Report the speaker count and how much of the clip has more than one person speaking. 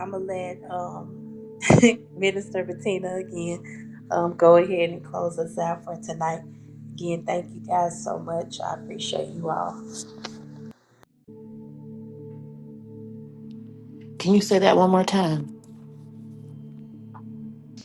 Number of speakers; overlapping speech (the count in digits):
2, no overlap